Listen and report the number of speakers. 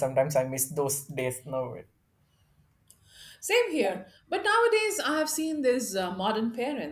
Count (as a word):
two